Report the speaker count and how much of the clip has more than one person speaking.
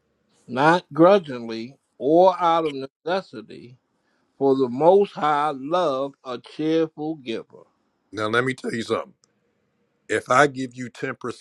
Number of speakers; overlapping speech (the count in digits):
2, no overlap